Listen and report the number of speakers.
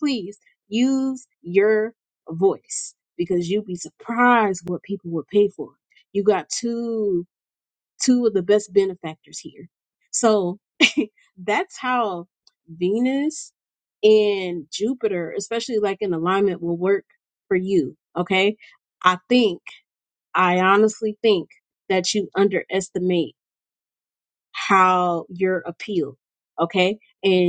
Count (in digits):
1